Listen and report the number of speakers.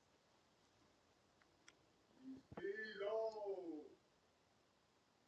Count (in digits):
0